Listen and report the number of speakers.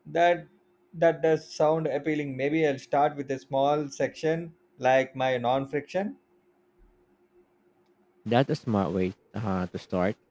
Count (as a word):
two